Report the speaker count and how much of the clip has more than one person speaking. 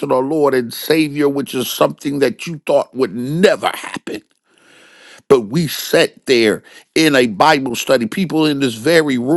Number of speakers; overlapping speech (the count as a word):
one, no overlap